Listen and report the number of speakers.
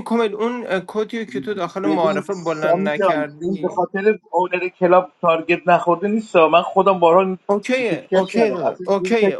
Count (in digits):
2